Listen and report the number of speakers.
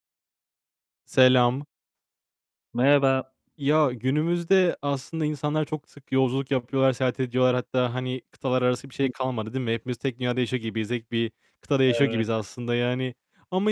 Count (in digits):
2